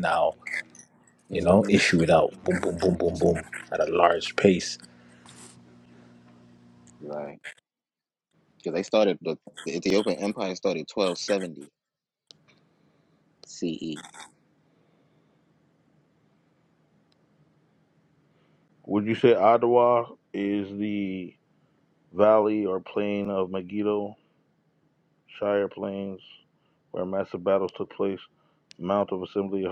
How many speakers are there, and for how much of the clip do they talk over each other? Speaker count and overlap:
3, about 2%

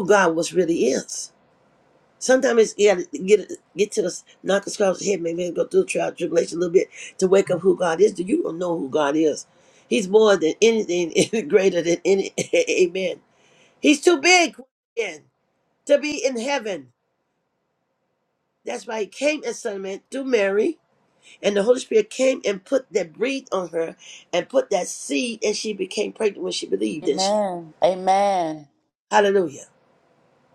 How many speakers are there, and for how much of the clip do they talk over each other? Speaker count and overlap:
2, about 1%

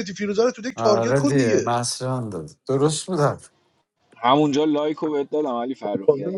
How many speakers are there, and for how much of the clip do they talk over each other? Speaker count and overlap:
3, about 14%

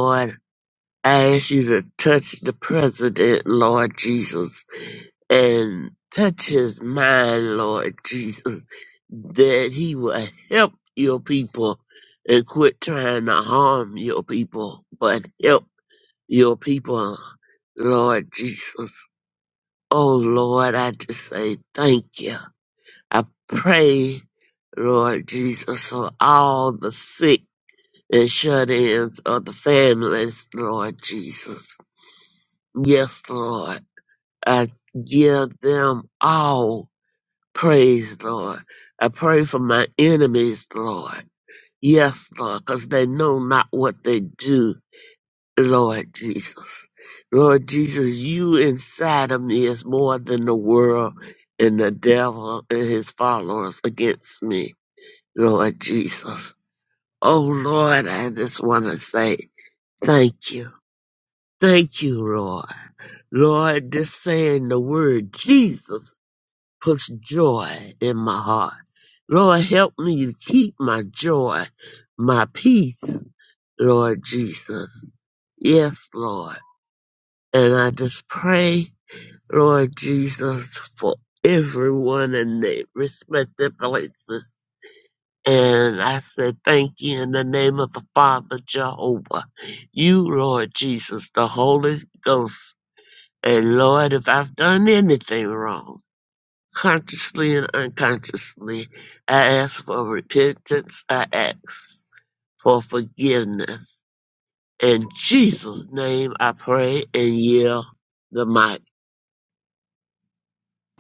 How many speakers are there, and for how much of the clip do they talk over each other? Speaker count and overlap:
1, no overlap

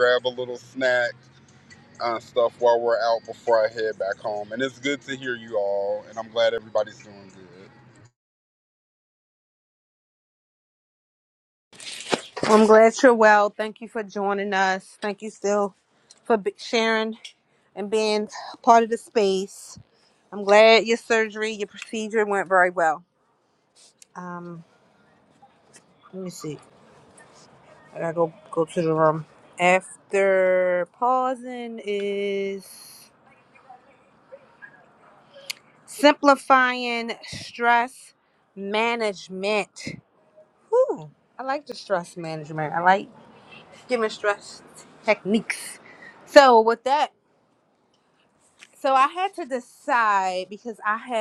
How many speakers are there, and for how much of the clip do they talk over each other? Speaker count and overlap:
2, no overlap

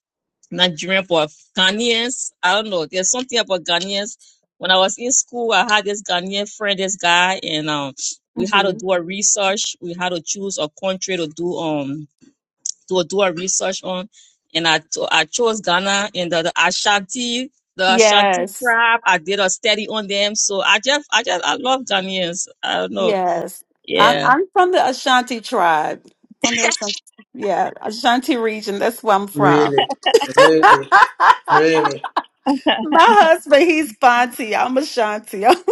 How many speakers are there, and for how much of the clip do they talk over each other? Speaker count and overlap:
3, about 4%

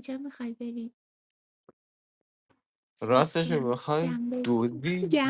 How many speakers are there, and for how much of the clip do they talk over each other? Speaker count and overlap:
2, about 30%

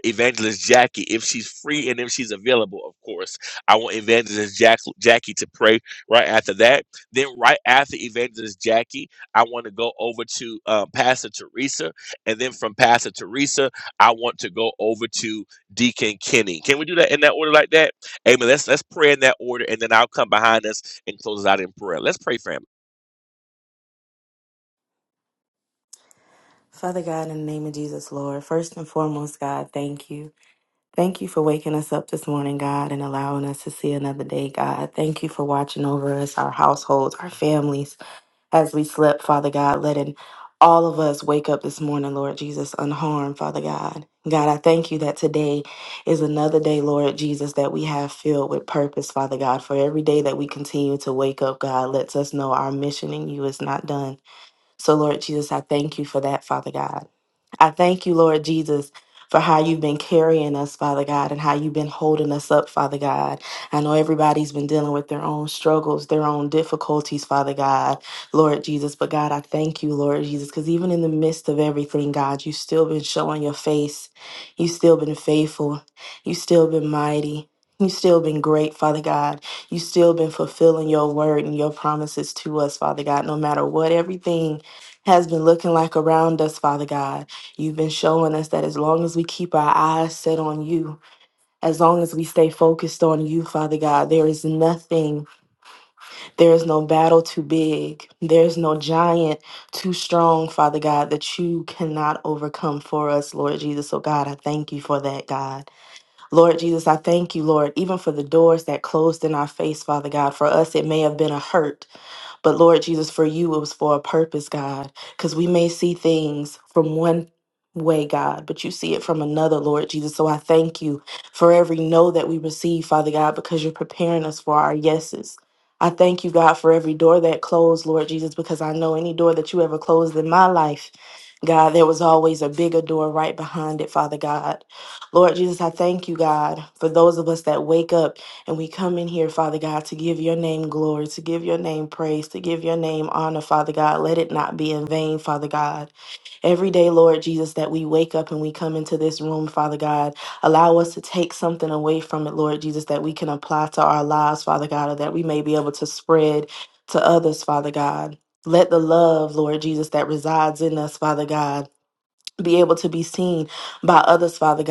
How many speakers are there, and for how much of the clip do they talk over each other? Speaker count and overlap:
2, no overlap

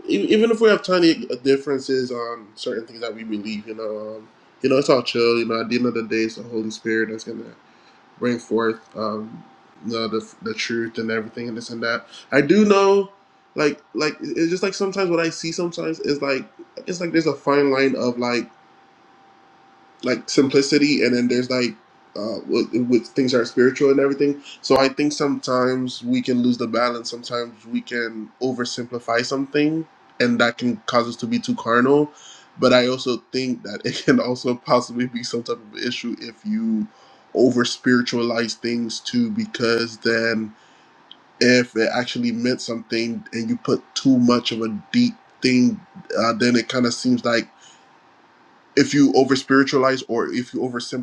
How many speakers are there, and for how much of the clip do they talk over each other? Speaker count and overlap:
1, no overlap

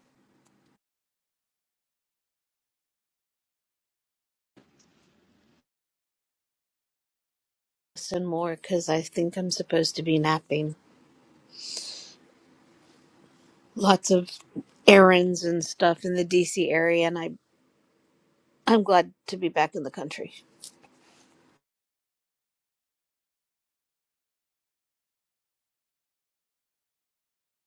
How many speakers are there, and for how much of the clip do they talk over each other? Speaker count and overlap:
1, no overlap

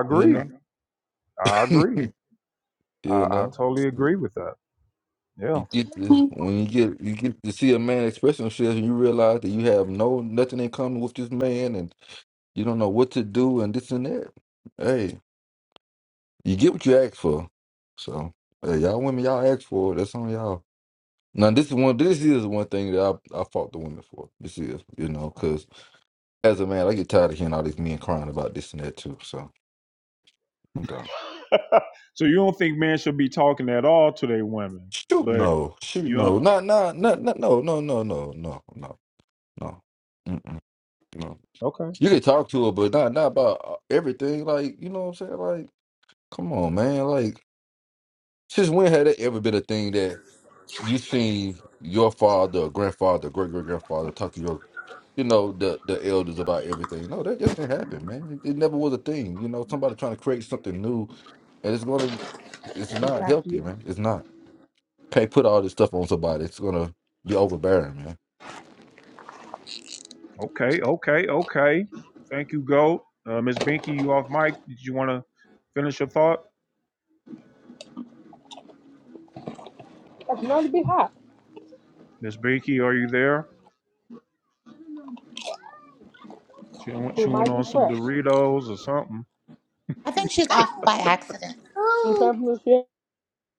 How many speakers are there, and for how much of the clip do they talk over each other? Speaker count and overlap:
4, about 4%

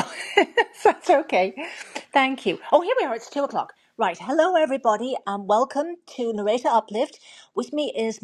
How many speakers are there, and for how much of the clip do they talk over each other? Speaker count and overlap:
1, no overlap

